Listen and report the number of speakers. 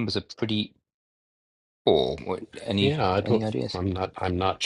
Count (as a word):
two